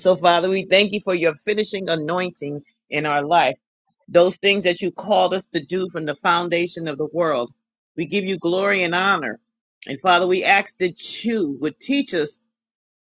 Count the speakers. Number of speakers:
one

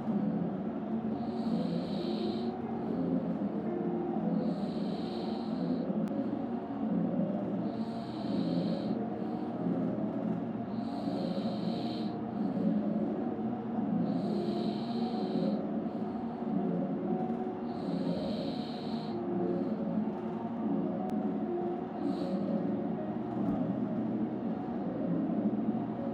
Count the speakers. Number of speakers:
zero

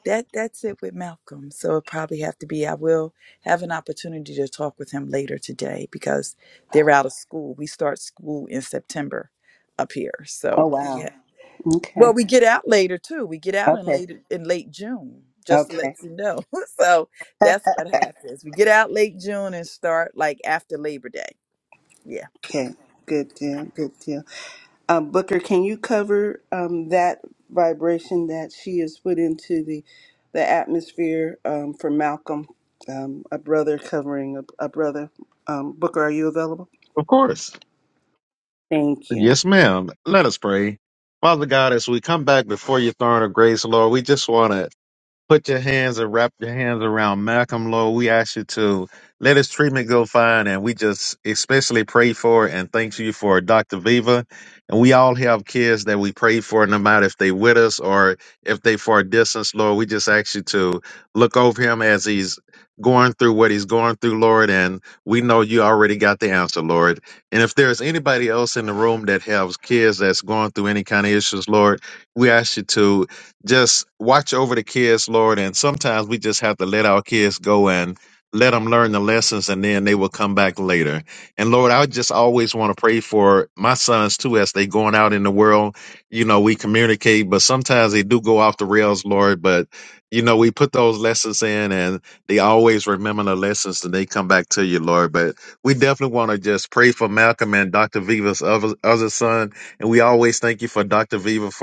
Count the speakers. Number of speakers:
three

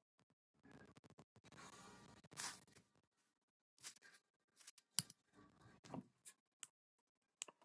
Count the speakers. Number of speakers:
zero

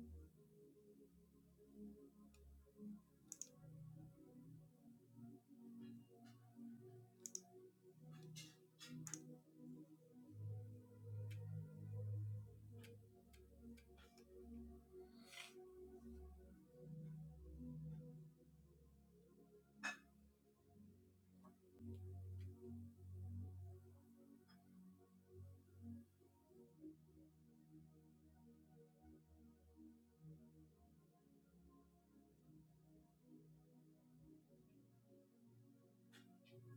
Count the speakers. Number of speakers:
zero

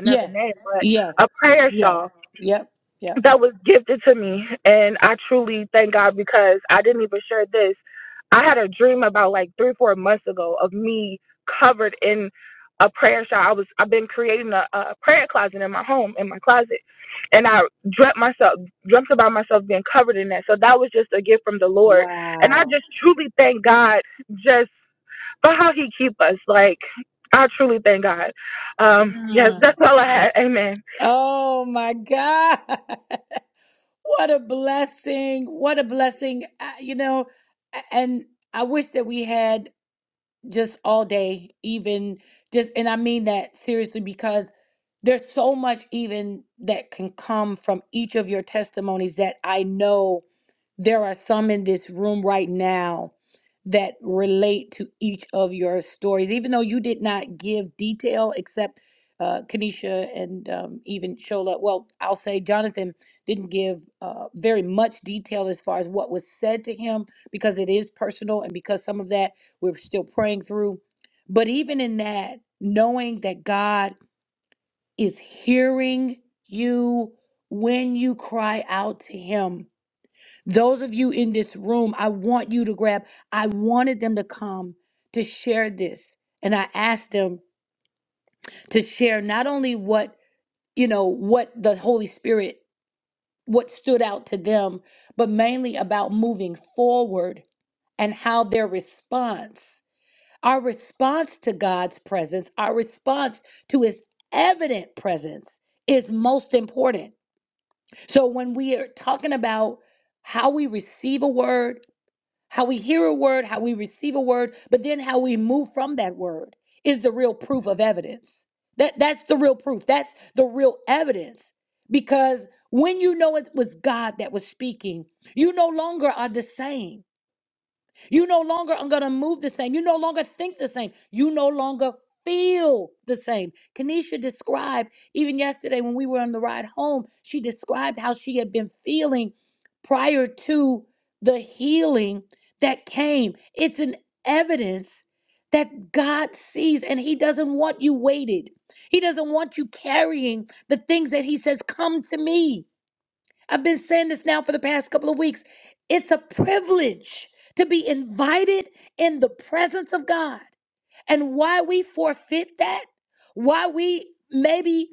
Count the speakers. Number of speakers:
two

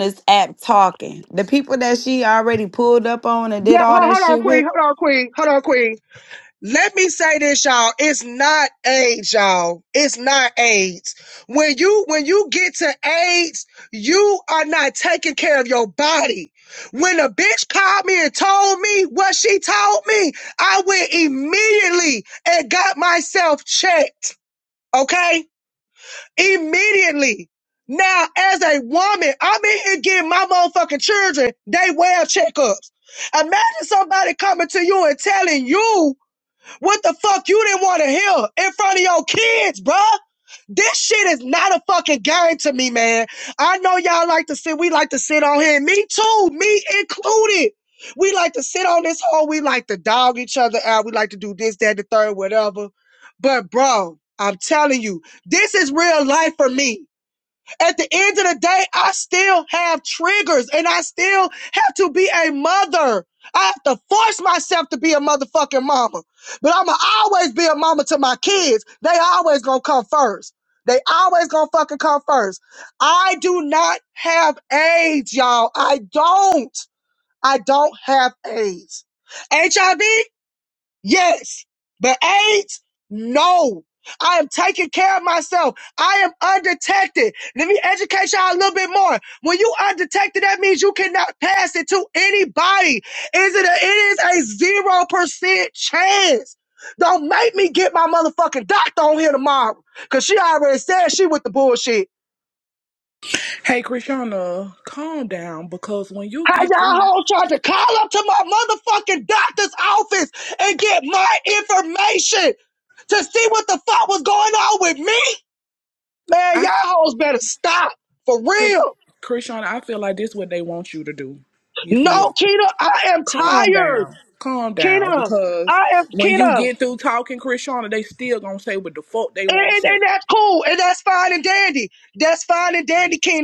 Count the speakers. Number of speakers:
three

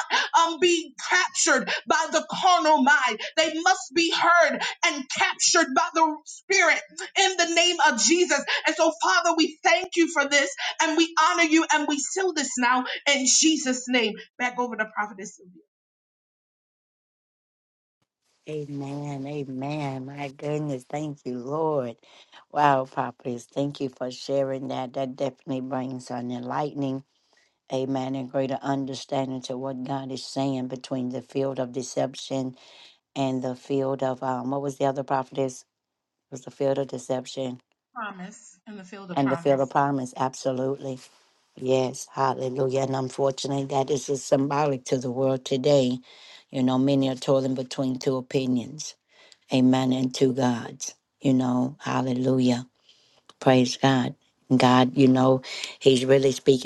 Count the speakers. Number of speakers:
two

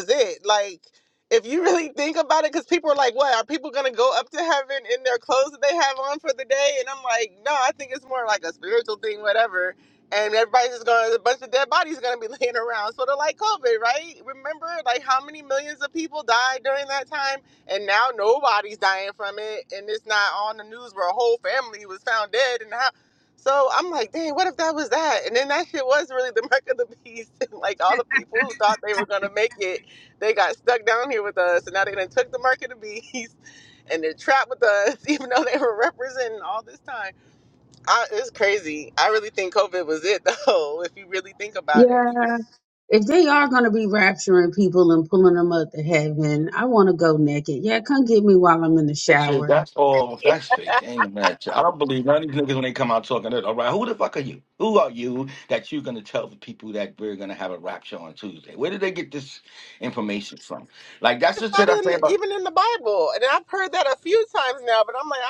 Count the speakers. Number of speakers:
three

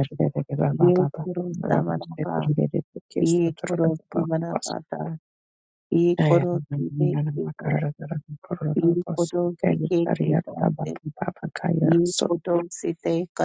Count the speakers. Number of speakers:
two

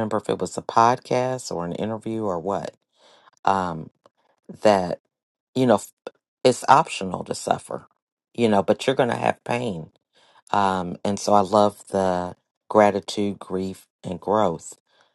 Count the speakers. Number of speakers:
one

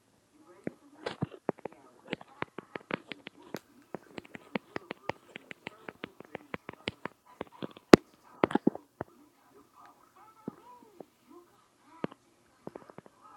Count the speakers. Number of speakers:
zero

